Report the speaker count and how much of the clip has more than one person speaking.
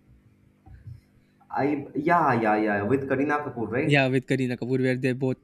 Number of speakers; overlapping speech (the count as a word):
two, about 3%